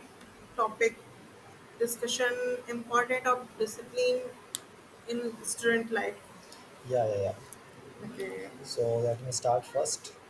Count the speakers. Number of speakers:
2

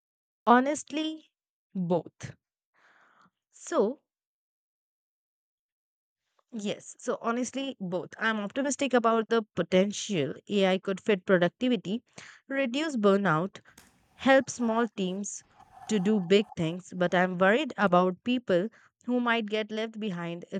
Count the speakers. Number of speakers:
1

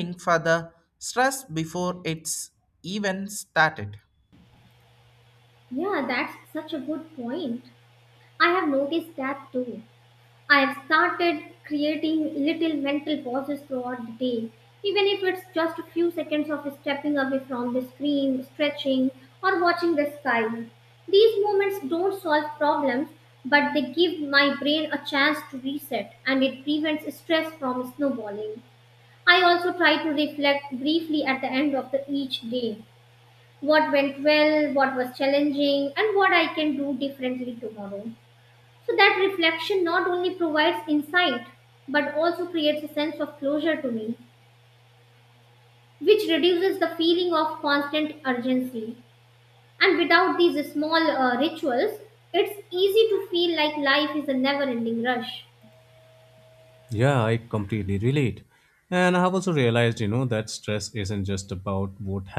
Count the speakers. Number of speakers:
3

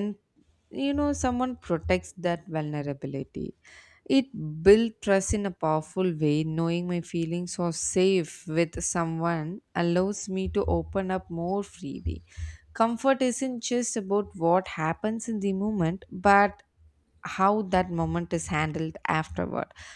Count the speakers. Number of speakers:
1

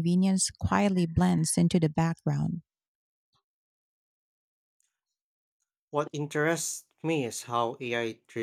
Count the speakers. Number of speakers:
2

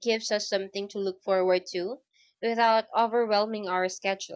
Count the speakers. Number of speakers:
1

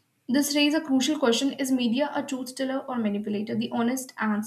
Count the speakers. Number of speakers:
1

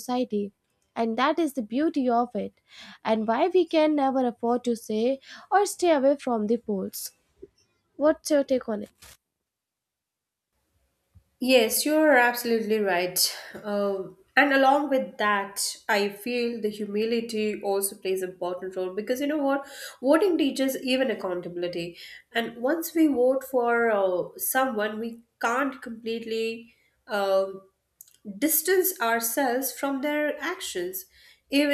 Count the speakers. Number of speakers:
2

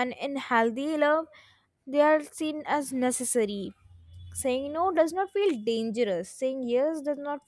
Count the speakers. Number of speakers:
1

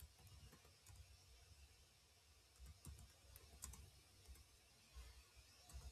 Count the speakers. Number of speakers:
0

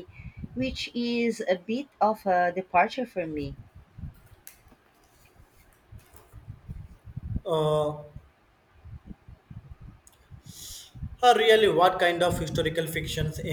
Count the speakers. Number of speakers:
2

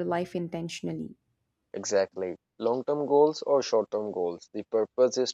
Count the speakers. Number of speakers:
2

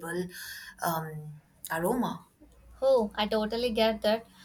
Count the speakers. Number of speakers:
2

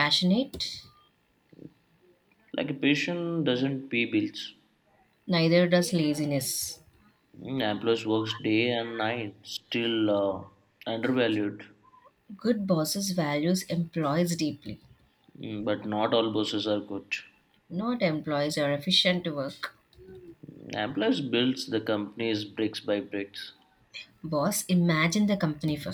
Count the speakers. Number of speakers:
2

